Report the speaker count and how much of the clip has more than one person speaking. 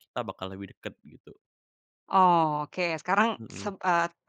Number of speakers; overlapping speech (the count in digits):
2, about 7%